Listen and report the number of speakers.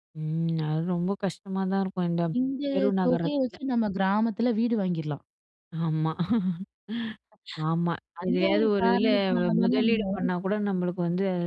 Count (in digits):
2